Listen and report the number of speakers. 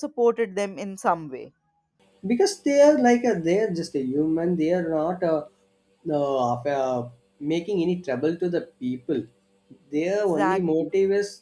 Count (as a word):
two